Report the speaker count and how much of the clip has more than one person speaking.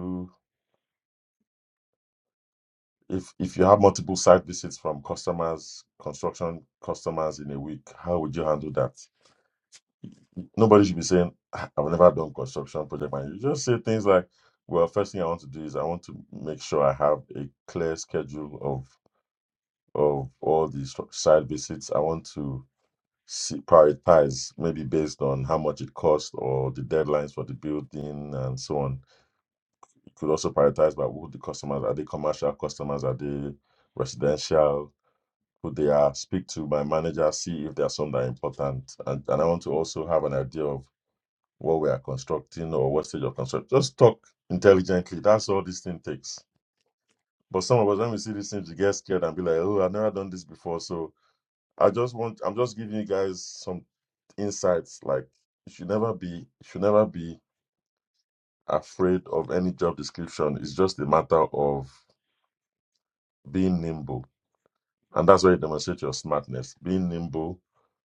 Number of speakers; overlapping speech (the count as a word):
one, no overlap